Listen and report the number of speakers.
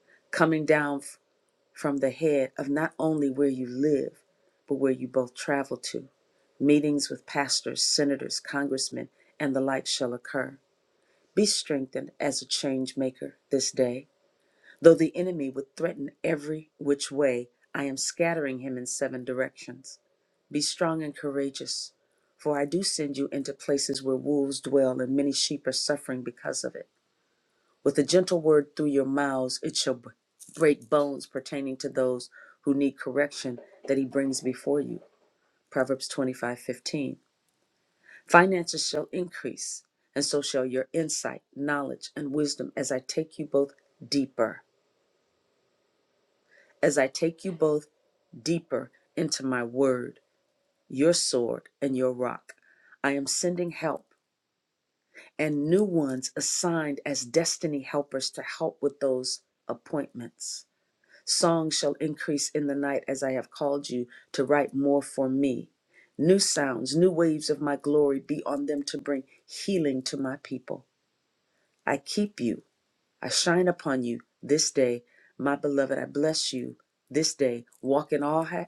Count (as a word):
one